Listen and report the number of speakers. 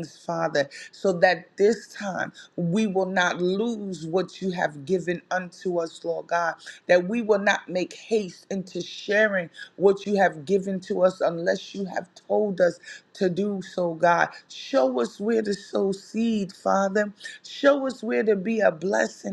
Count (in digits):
1